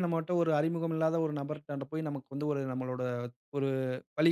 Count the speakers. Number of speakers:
1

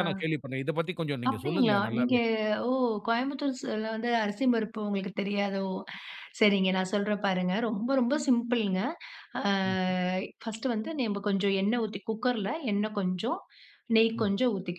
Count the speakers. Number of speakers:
2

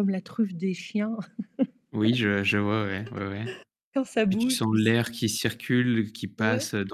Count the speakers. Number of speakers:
2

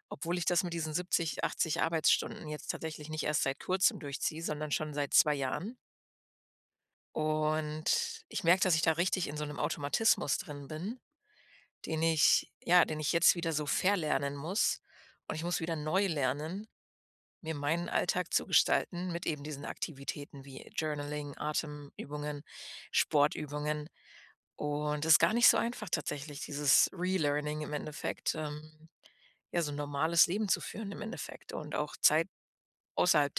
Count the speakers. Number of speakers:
1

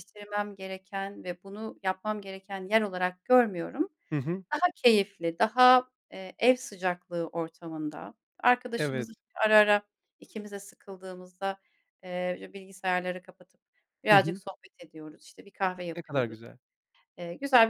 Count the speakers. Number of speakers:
2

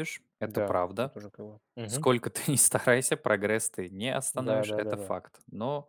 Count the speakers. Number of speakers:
2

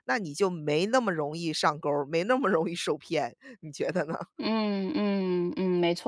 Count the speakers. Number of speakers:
2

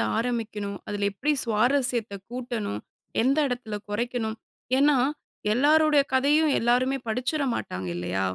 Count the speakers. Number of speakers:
1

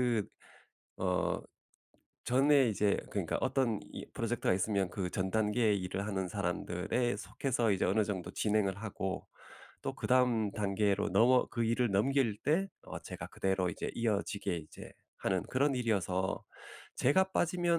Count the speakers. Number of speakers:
1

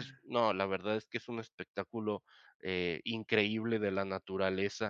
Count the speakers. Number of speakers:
1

